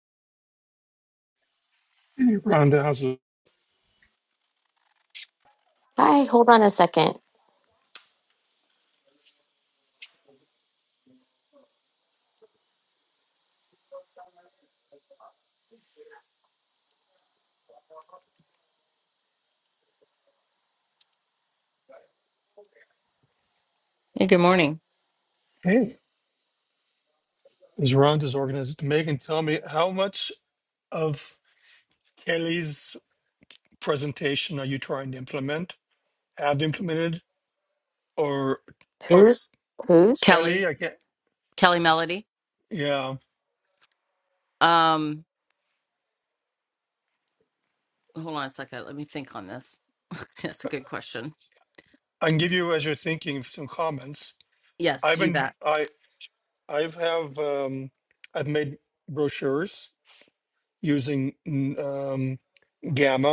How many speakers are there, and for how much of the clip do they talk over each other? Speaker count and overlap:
3, about 2%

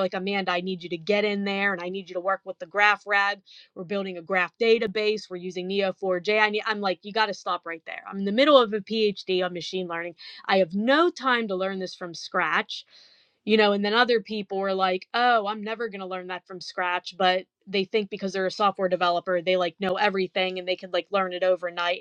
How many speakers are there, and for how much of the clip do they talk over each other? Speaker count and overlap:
1, no overlap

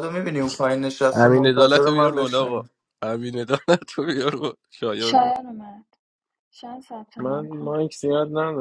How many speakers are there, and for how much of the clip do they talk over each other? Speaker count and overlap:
4, about 27%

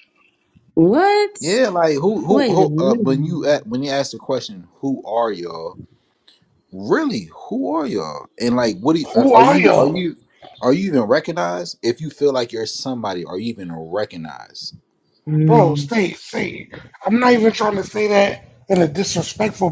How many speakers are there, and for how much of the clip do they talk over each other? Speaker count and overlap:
3, about 12%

